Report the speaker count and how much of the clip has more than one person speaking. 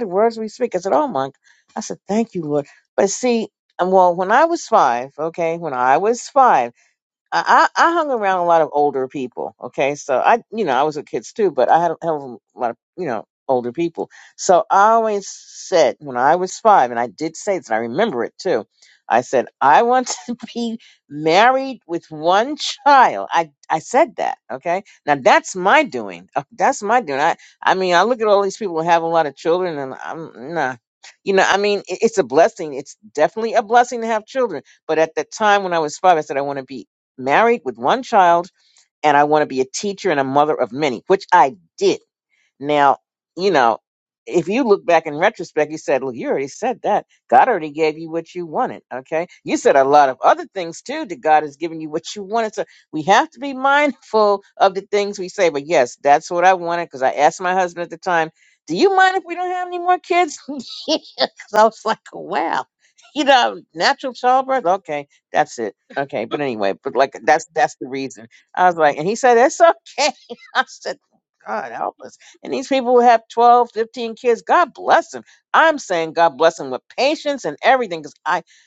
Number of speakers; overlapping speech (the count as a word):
one, no overlap